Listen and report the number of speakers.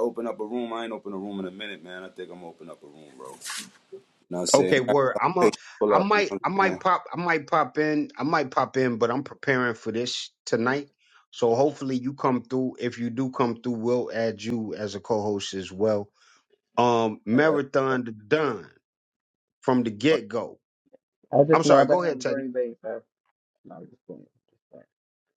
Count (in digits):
3